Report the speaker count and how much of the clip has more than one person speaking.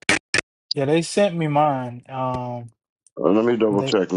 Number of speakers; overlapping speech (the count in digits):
2, about 5%